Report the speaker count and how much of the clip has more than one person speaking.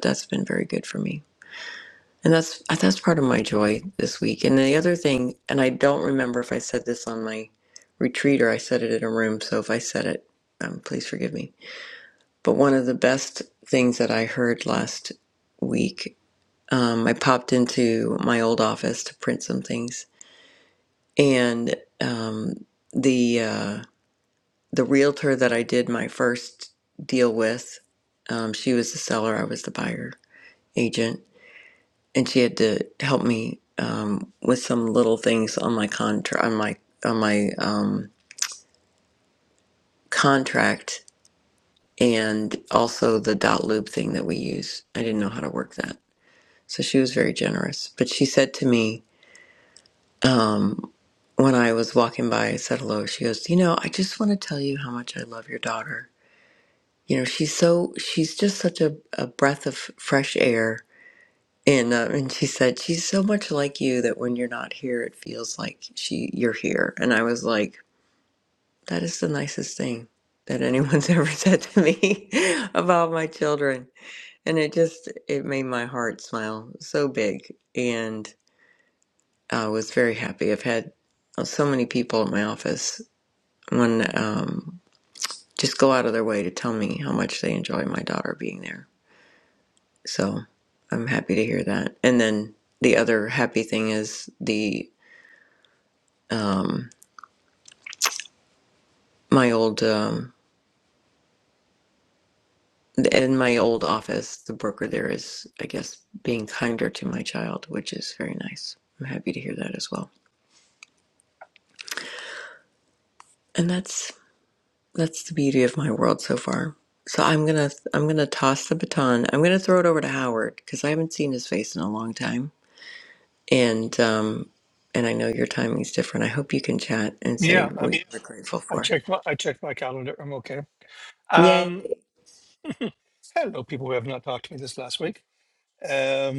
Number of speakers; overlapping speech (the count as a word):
two, about 1%